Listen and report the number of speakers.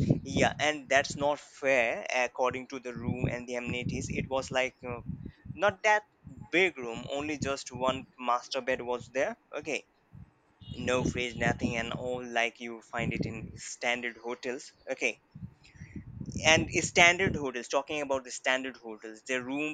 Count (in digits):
1